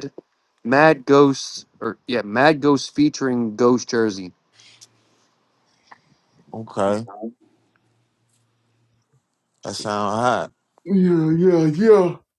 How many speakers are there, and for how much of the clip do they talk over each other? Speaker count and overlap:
3, no overlap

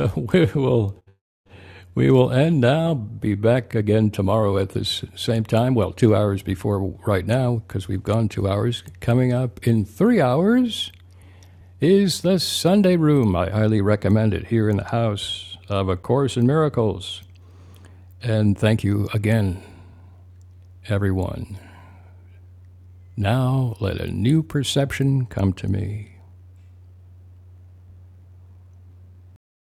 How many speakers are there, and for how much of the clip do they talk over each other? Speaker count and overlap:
1, no overlap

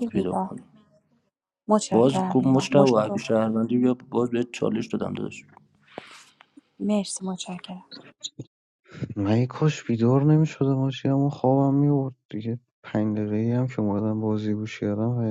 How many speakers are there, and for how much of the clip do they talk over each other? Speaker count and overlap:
3, about 12%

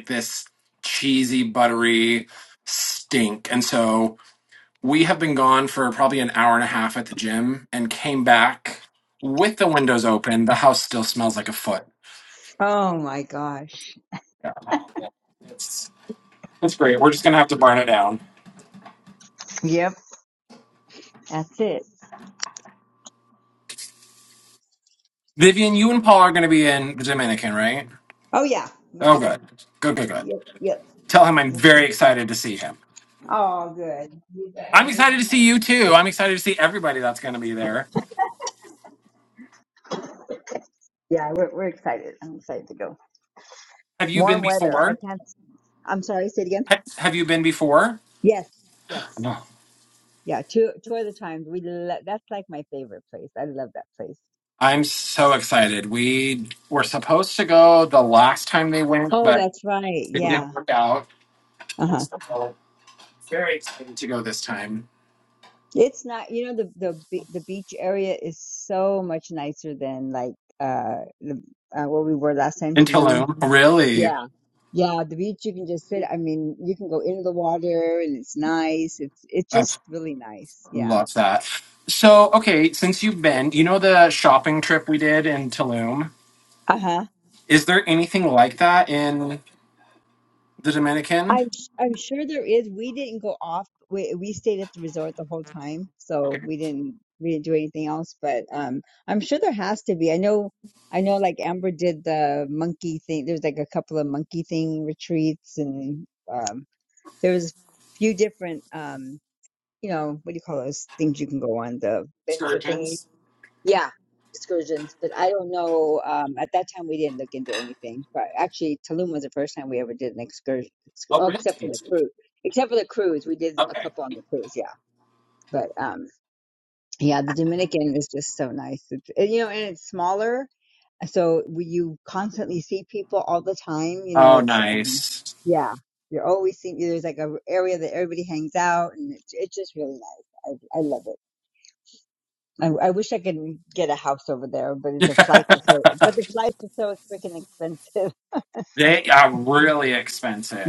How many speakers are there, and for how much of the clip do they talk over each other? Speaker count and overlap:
2, about 4%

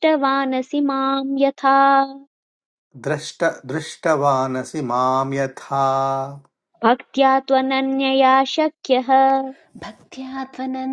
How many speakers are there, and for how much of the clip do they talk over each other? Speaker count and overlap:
3, no overlap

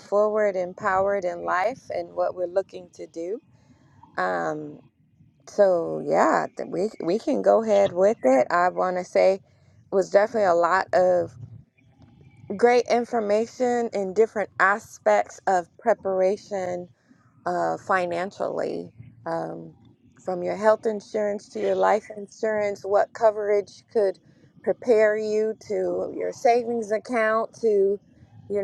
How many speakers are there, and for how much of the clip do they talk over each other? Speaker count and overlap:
1, no overlap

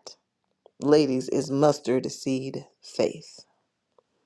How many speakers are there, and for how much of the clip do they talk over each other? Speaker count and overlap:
1, no overlap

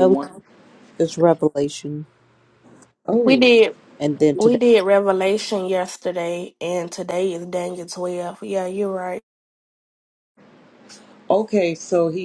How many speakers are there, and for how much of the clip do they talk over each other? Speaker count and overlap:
3, about 5%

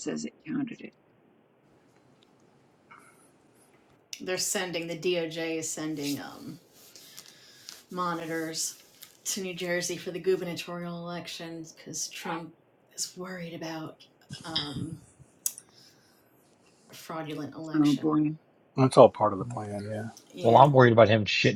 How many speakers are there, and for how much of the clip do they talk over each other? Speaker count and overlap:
4, about 3%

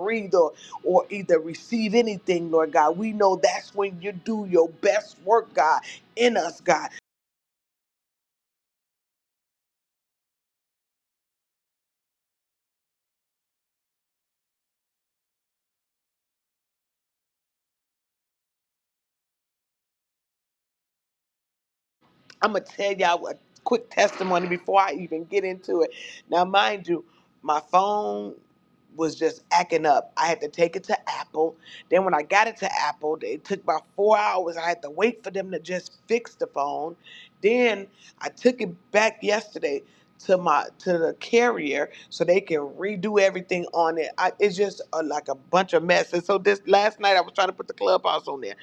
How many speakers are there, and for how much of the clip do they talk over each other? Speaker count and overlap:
1, no overlap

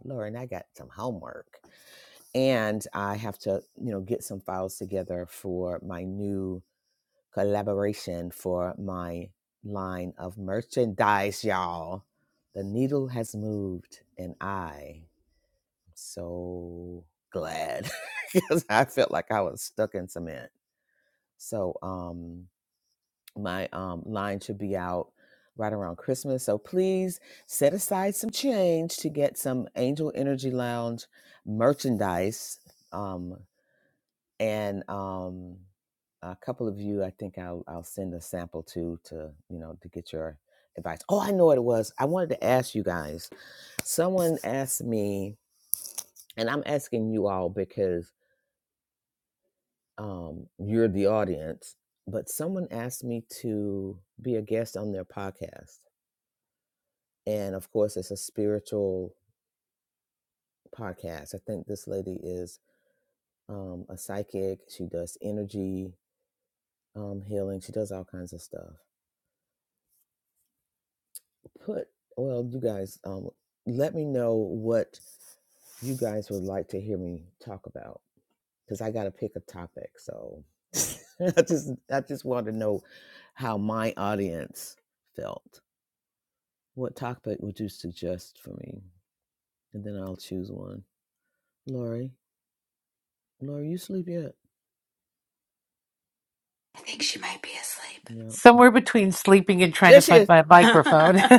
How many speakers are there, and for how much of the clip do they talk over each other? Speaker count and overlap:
3, about 1%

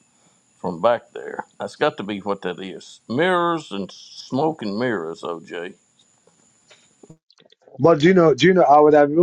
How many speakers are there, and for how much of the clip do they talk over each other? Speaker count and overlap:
2, no overlap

